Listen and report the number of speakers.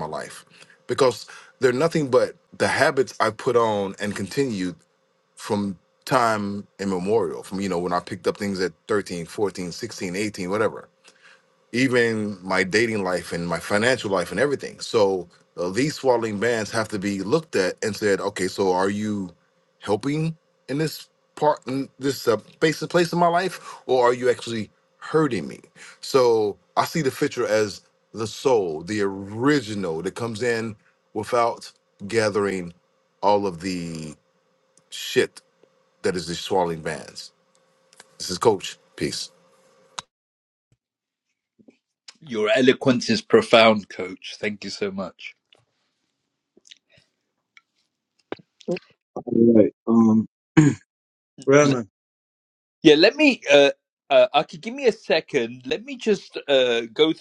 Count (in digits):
3